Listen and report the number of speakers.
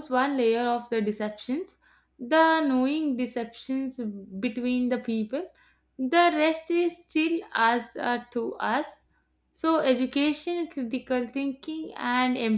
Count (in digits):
1